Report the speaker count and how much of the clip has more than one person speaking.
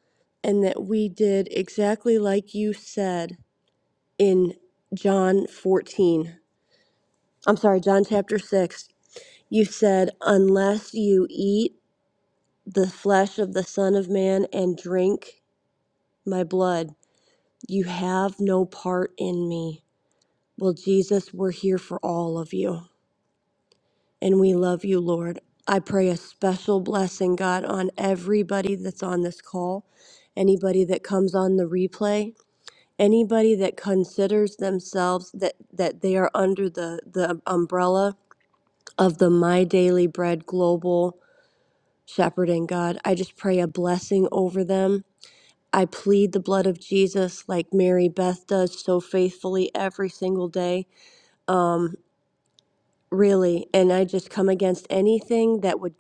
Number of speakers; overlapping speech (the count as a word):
one, no overlap